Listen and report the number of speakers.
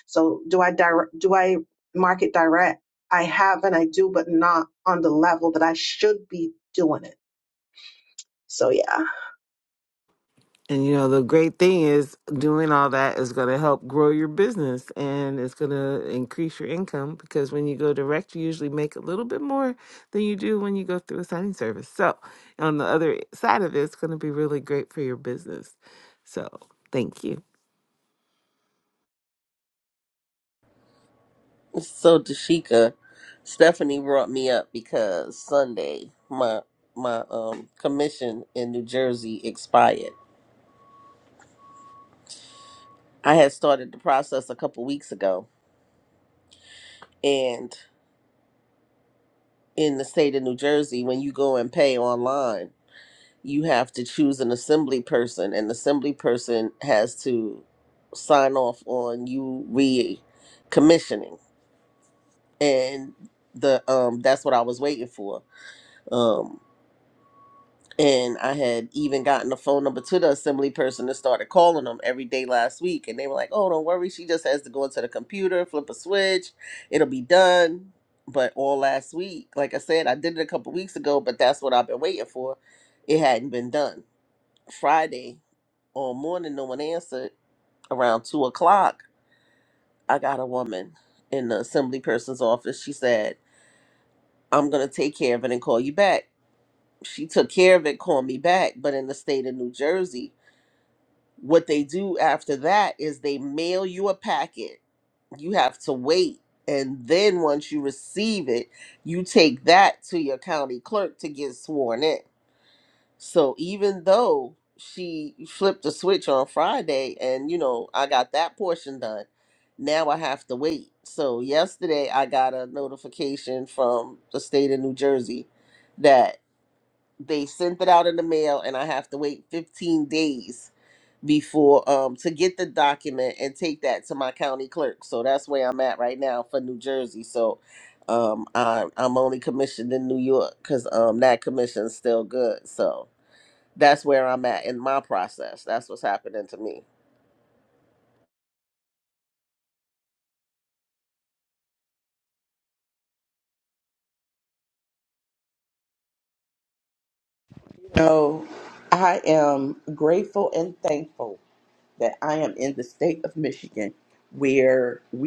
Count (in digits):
4